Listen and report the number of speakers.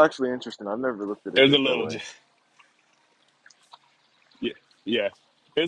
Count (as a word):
two